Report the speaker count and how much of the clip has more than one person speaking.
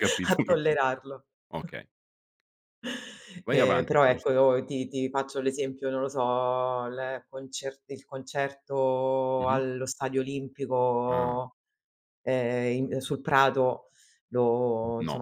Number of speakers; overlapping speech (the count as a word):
two, about 13%